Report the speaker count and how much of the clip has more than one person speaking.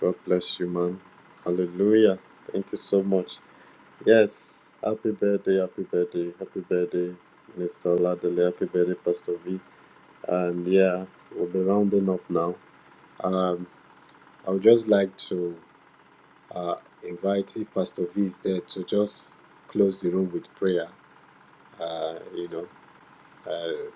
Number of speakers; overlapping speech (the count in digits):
1, no overlap